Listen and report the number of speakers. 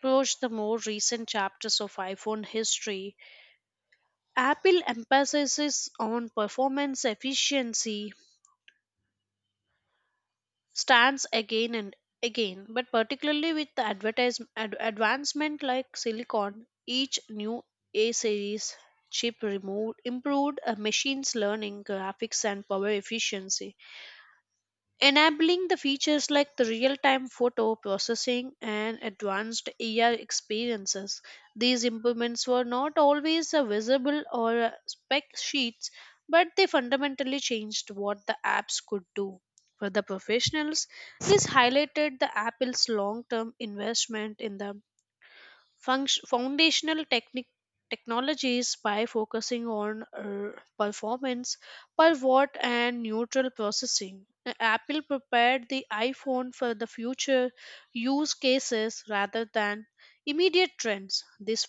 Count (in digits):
1